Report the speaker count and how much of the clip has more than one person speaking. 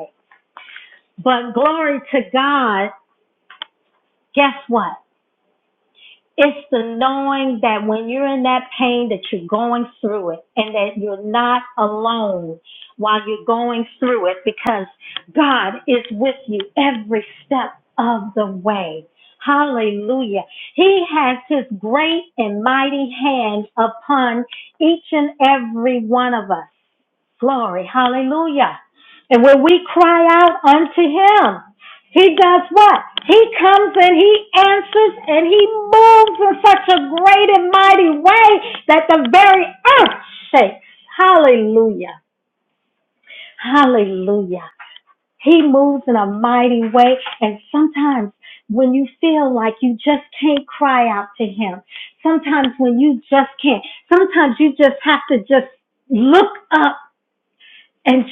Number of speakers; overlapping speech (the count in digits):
1, no overlap